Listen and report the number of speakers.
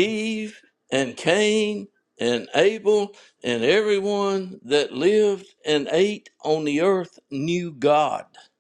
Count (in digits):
1